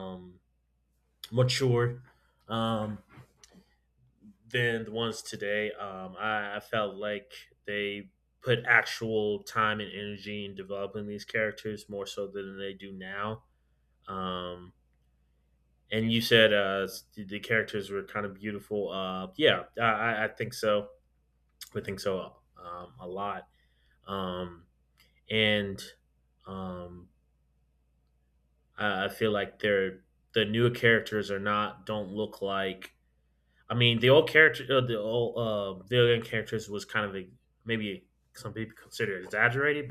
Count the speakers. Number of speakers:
1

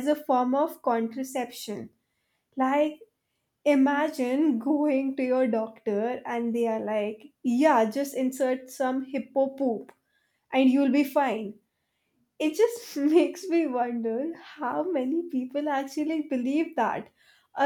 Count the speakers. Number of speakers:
1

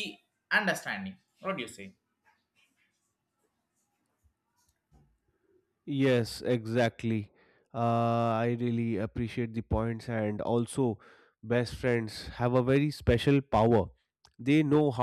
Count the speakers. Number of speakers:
2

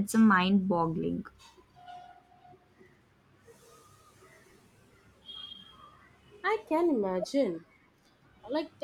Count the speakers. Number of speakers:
2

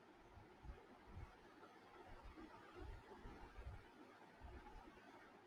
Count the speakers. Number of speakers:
0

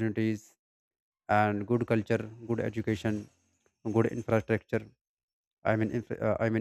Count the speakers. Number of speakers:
1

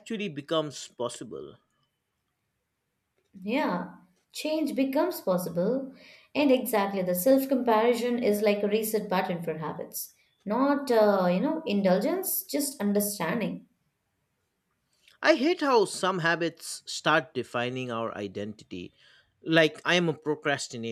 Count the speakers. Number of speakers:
2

